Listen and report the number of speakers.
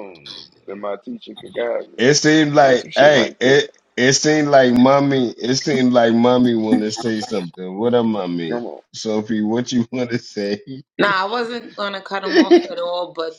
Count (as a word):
three